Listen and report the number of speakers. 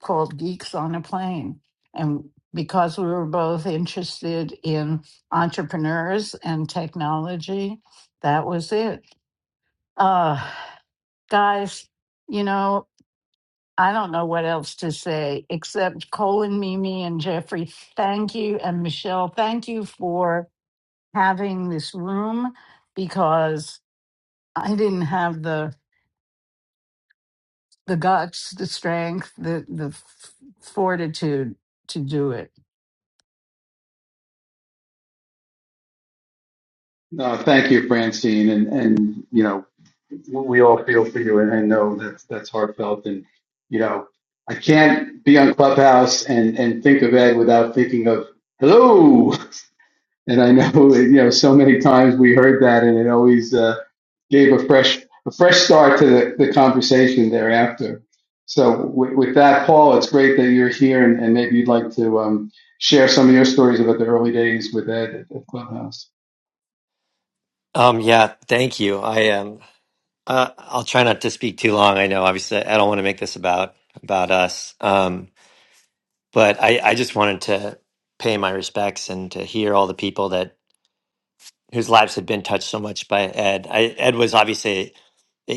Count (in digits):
3